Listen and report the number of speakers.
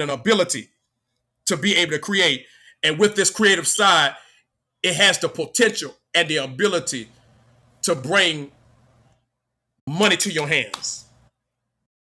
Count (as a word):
one